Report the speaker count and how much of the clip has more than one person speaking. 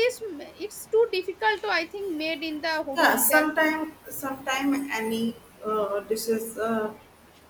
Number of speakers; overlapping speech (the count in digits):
2, about 7%